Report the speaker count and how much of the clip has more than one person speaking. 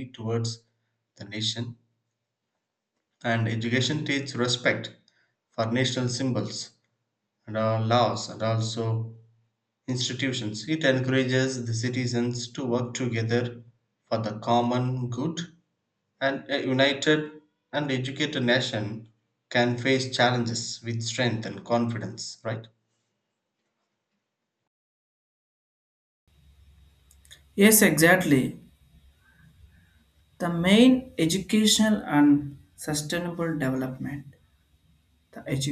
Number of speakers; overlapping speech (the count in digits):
2, no overlap